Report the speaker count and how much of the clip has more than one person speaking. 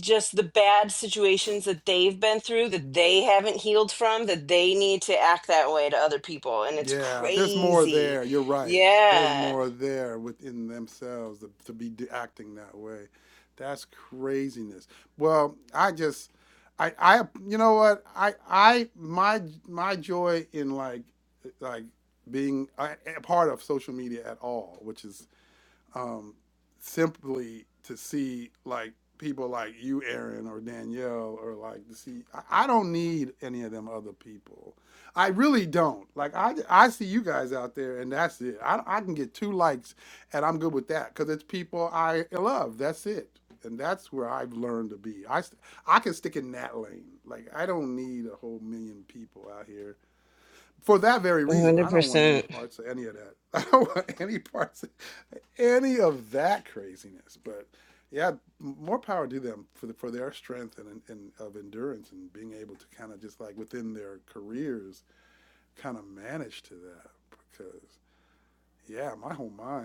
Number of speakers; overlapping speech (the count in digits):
2, about 4%